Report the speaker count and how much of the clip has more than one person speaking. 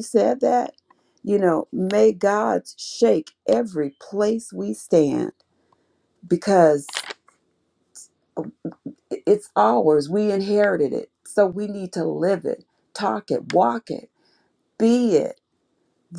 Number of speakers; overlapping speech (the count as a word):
one, no overlap